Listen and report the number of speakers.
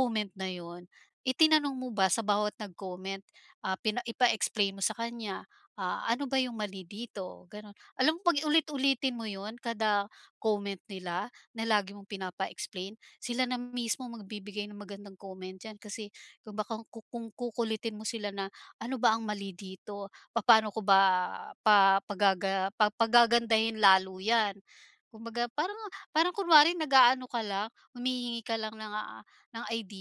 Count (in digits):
1